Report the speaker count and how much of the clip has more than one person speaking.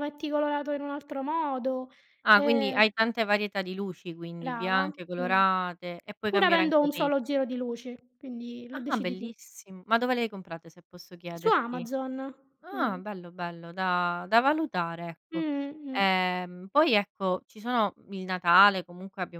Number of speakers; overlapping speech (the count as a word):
two, about 19%